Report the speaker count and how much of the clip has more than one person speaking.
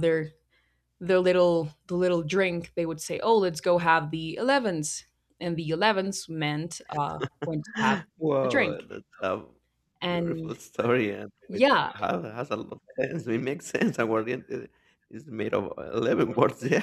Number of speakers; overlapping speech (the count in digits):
2, about 6%